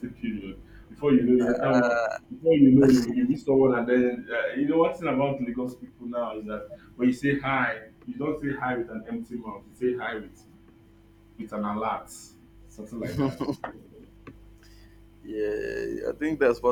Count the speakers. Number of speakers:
2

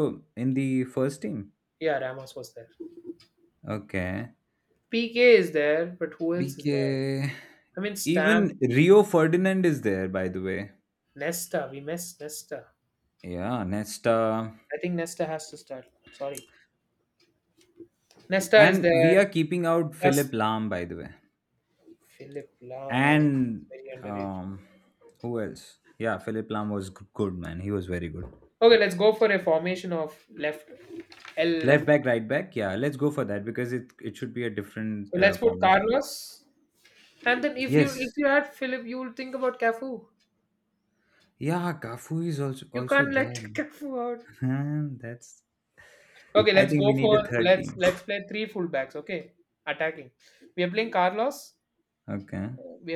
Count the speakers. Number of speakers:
2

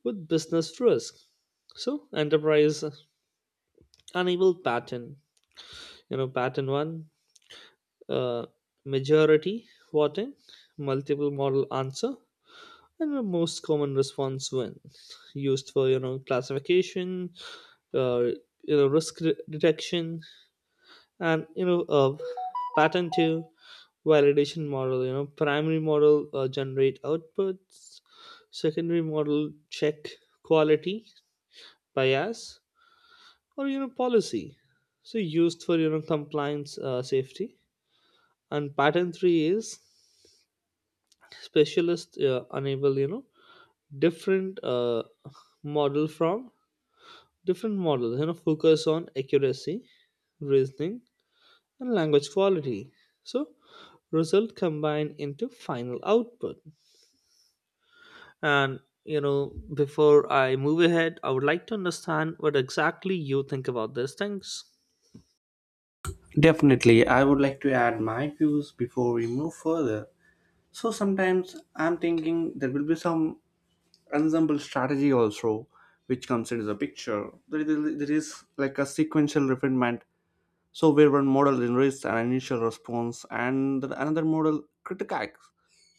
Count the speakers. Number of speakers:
2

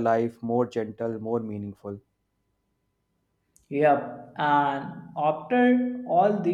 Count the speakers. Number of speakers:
2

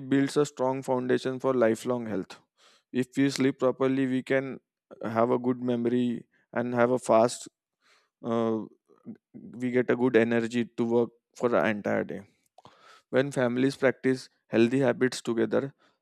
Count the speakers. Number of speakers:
1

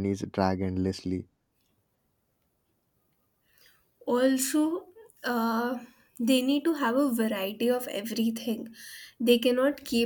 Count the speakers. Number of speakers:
2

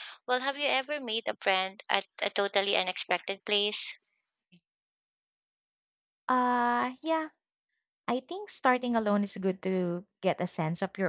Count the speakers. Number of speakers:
2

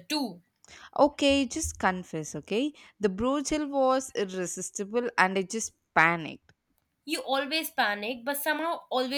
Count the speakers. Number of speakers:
2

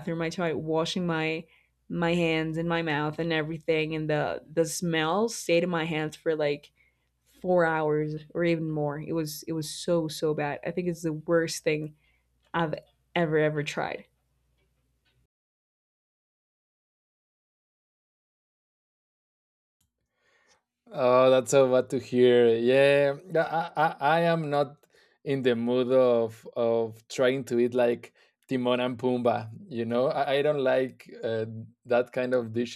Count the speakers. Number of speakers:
2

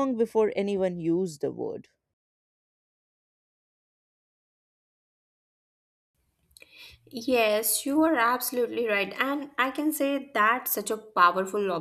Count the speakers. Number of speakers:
2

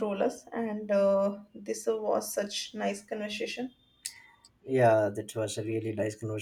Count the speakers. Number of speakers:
2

